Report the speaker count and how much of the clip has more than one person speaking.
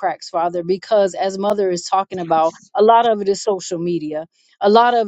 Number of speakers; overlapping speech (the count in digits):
1, no overlap